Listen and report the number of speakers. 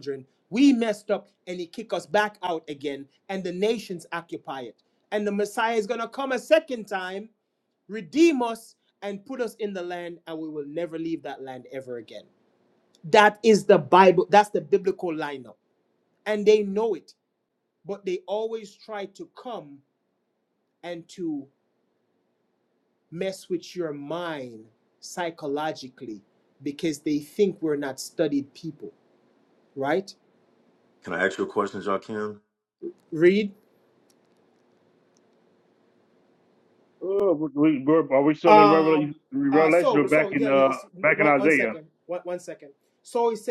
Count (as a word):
three